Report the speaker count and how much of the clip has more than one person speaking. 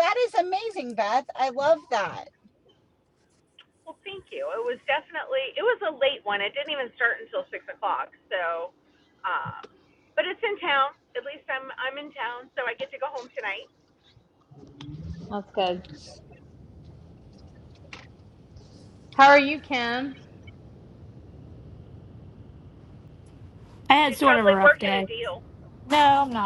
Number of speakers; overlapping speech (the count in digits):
4, about 4%